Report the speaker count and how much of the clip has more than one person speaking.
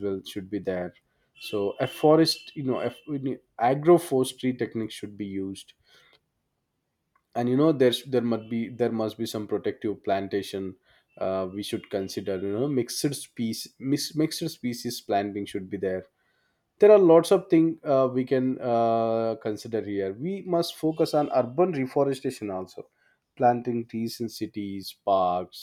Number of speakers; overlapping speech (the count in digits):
1, no overlap